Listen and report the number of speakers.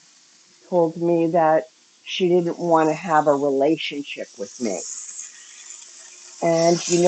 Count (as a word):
one